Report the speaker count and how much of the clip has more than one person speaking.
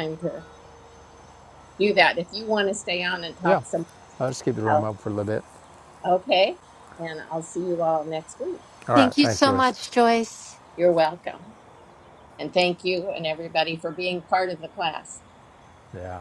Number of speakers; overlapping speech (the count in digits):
3, about 6%